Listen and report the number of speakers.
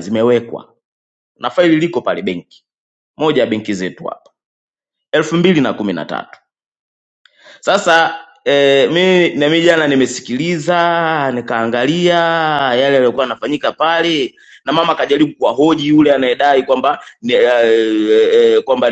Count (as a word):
one